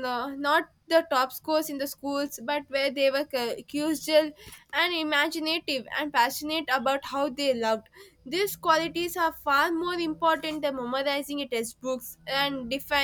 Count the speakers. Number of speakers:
1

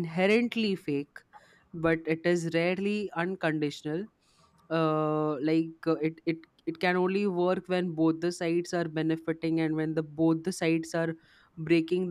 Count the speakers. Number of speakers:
1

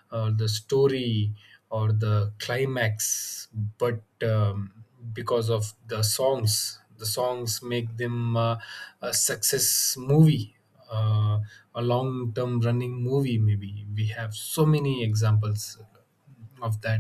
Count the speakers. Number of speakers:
1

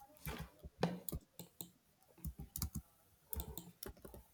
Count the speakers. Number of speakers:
0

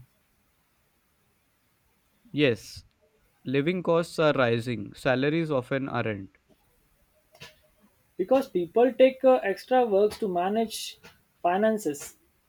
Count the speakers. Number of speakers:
2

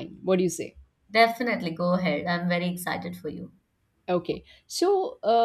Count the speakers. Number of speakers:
2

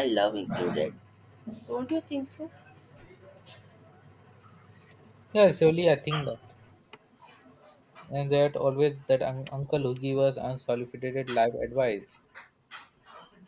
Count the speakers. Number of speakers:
2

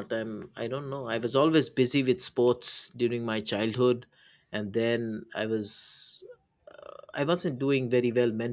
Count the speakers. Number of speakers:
1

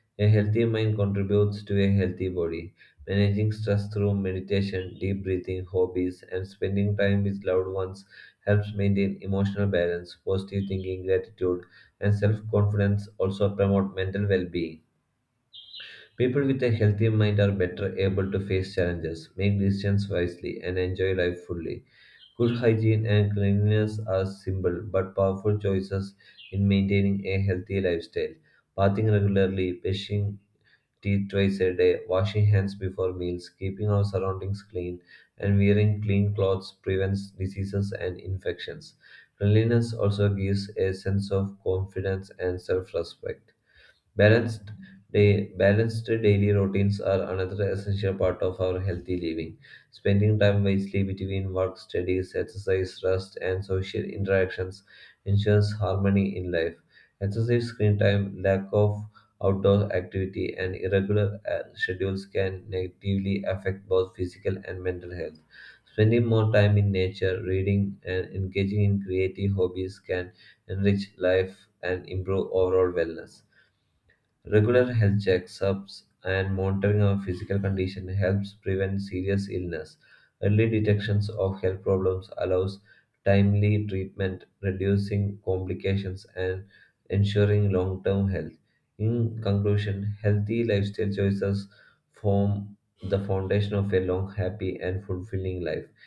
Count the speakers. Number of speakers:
1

